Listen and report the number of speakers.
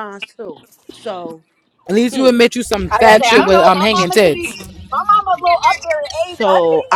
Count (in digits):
3